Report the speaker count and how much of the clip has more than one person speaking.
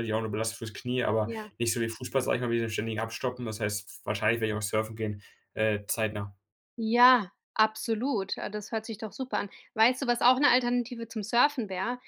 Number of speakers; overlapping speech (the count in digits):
2, about 2%